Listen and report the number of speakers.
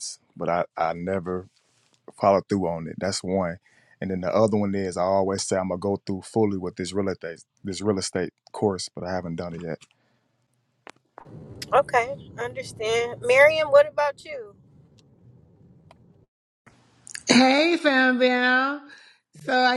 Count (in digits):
3